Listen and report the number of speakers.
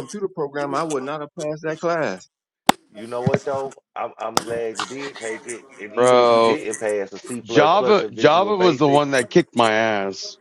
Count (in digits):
3